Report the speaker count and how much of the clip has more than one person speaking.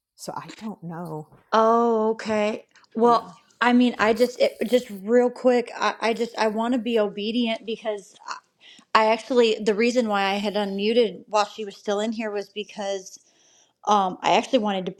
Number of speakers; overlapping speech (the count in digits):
2, about 2%